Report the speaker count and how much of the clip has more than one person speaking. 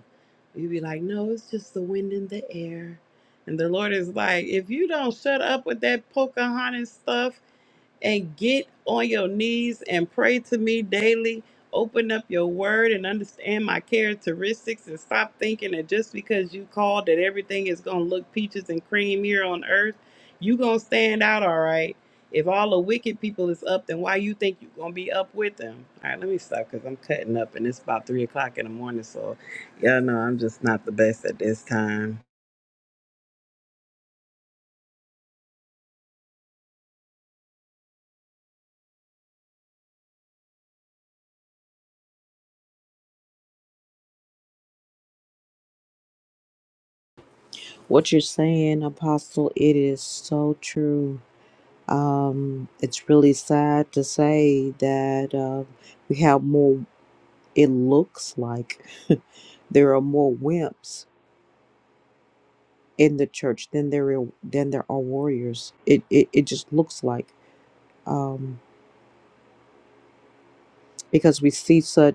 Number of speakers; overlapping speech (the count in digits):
2, no overlap